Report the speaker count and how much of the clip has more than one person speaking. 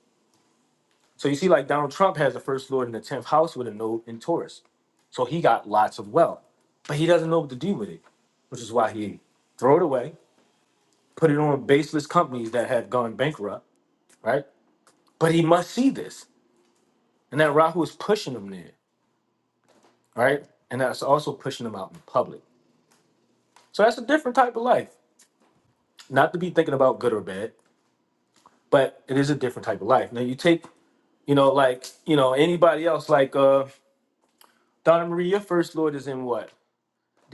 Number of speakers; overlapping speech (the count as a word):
one, no overlap